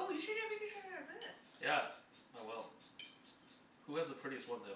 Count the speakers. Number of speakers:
two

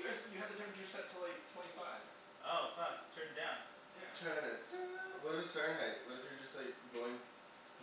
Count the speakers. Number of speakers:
three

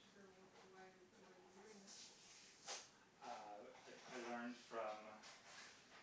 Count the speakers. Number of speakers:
two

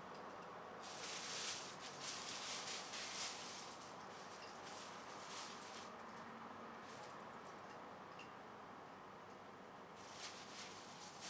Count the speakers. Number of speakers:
zero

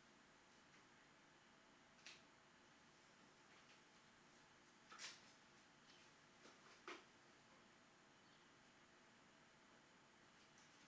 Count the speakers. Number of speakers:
zero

